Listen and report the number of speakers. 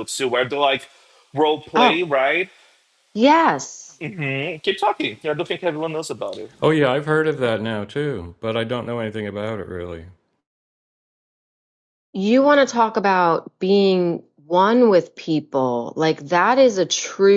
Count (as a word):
three